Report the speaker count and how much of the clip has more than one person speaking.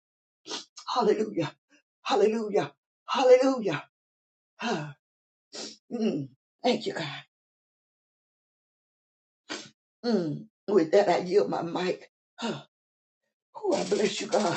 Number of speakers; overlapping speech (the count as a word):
one, no overlap